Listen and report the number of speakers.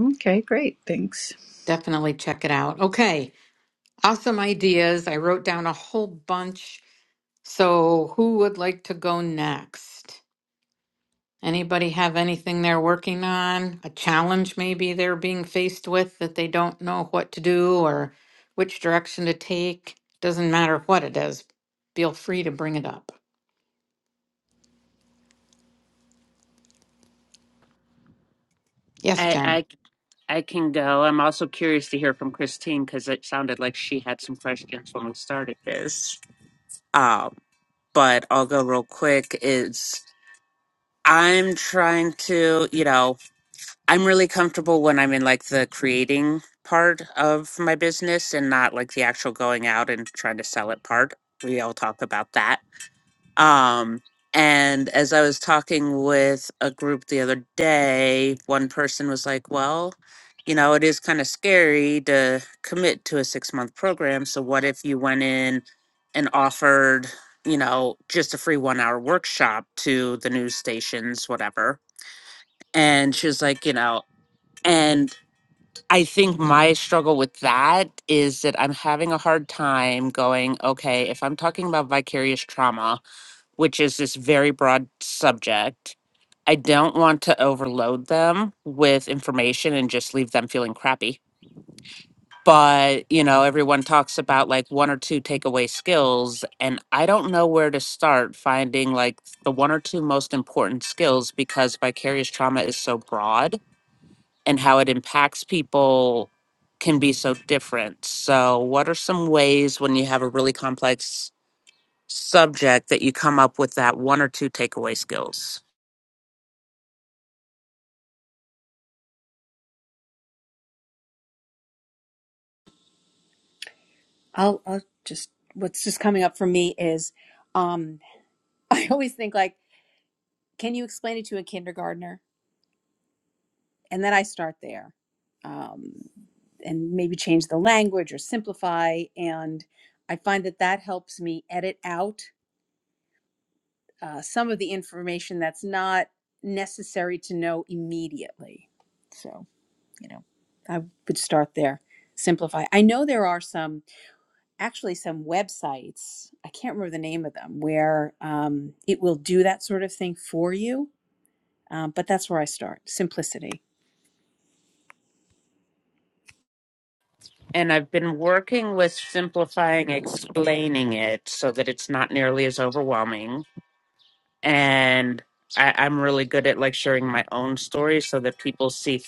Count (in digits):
4